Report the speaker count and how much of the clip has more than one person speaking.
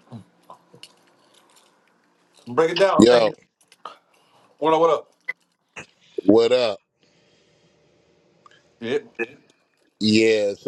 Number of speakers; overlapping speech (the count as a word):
two, about 3%